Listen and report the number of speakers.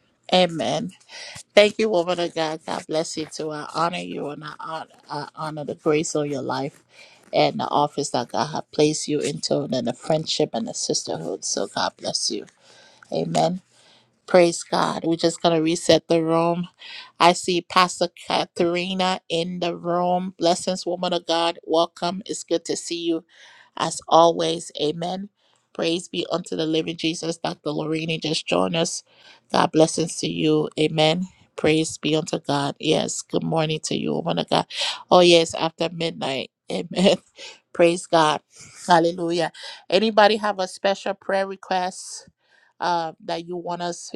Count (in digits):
1